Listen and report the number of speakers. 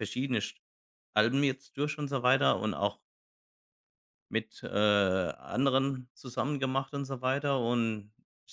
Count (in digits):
1